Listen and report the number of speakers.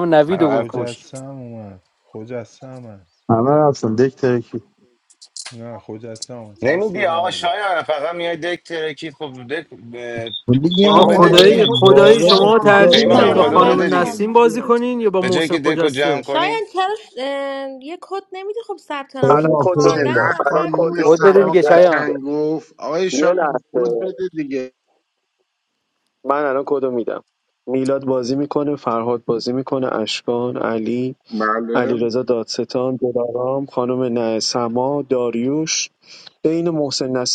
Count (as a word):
seven